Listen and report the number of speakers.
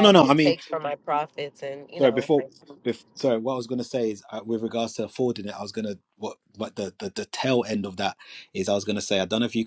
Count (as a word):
two